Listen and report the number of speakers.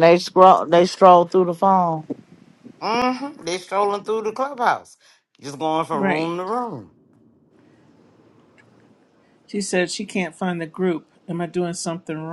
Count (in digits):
3